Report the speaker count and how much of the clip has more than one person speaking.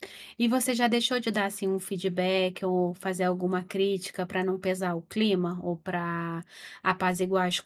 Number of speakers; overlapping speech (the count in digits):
1, no overlap